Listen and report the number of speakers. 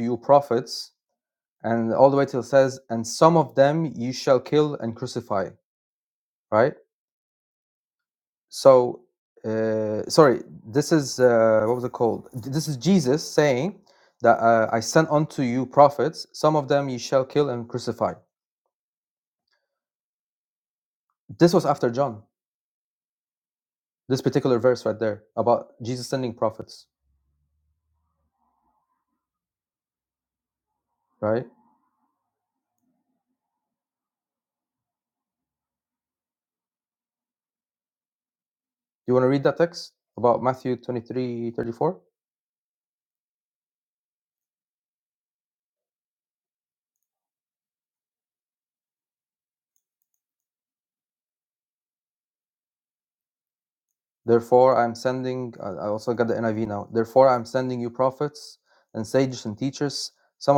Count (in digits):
1